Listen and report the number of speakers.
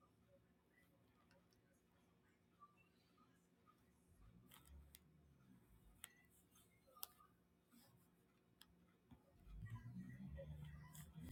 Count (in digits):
0